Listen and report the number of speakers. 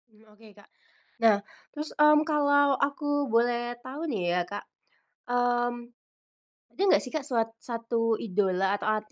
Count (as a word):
one